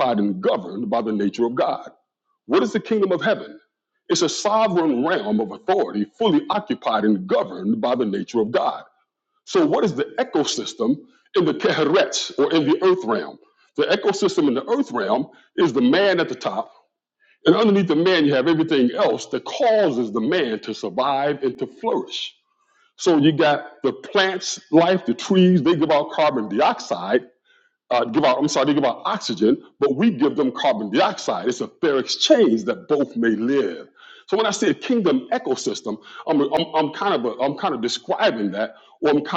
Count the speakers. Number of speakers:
one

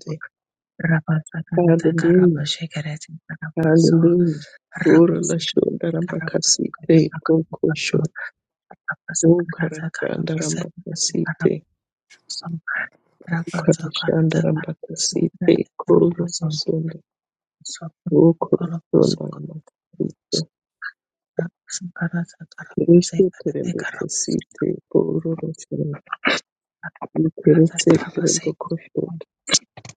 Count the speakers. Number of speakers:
two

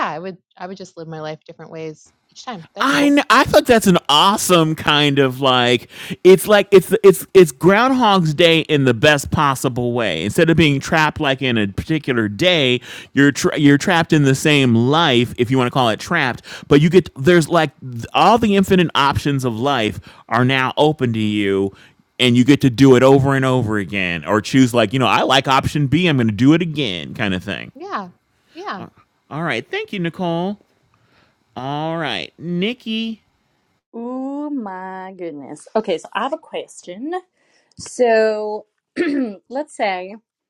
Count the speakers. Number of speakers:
three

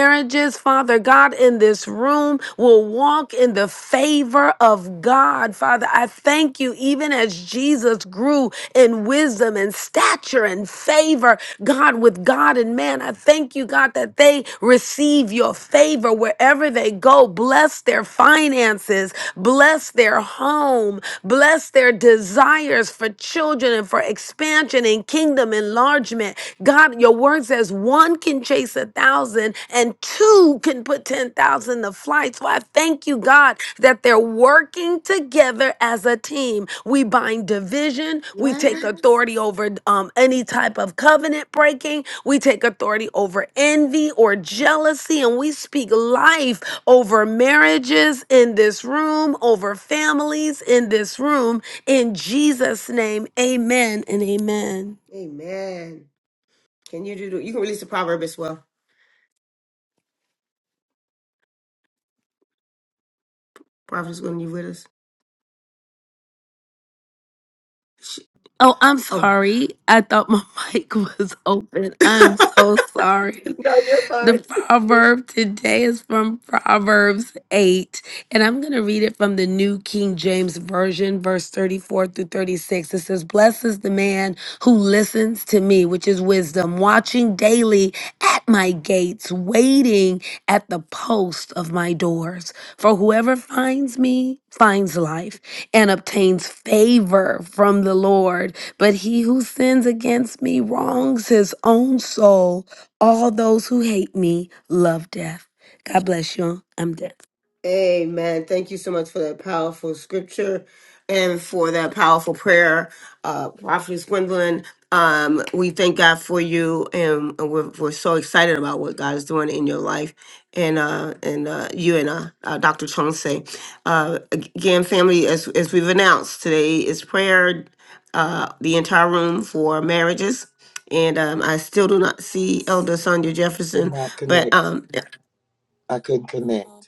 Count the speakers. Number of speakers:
three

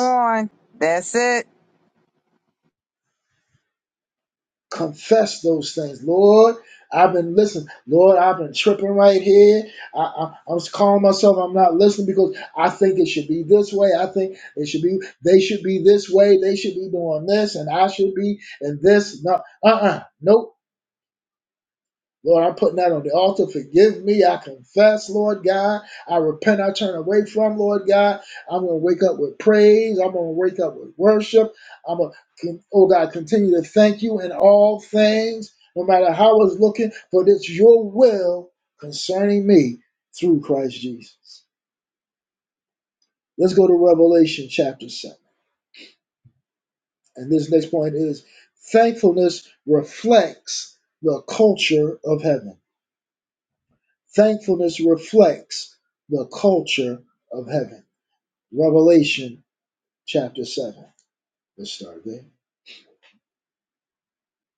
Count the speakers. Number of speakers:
two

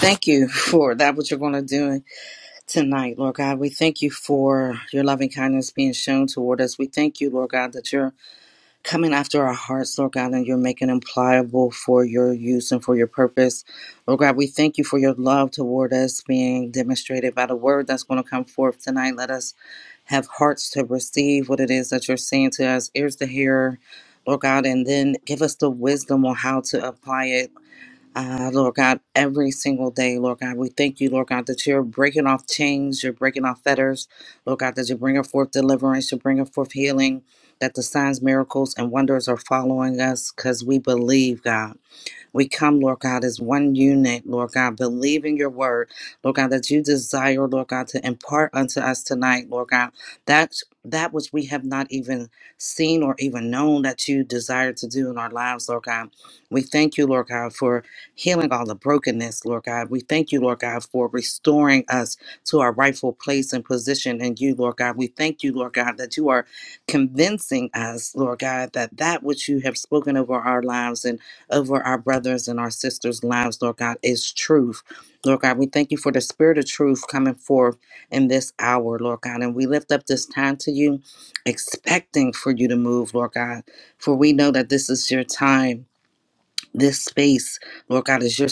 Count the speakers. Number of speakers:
one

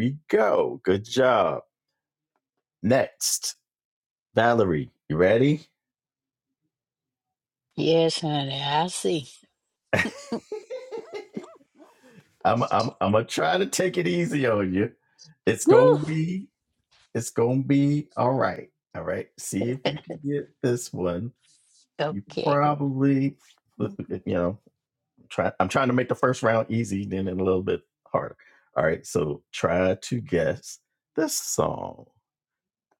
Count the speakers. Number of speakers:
two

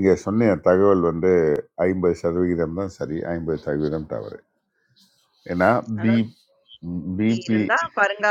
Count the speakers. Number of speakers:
two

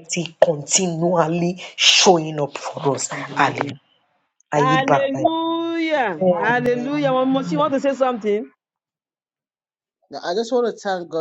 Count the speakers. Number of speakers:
three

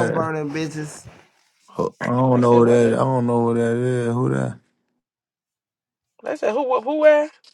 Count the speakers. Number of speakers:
three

